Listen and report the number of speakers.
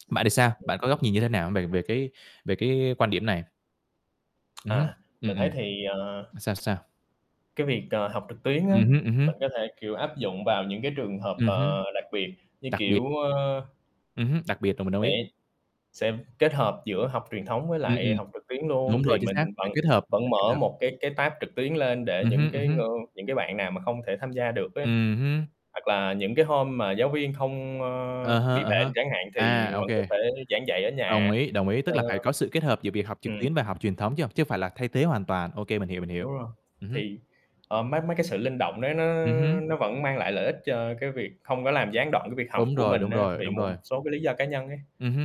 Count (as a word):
two